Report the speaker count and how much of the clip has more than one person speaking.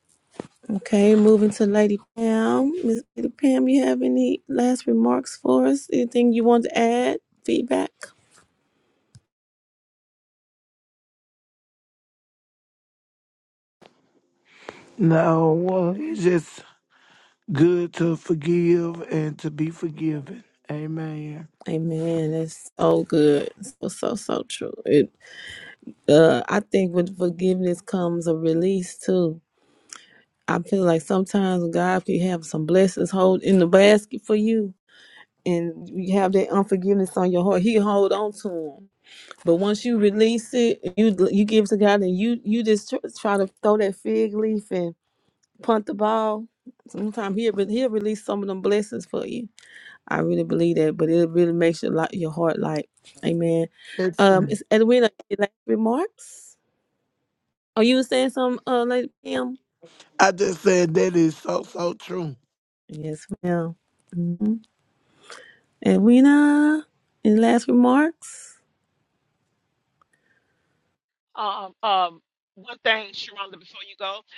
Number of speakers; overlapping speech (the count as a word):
three, under 1%